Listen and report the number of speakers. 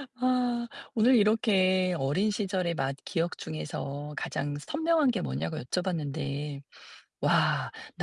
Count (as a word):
one